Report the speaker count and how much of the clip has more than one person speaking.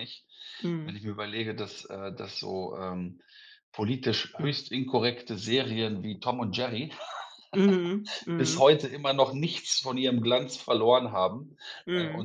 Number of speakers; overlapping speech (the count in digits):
2, about 6%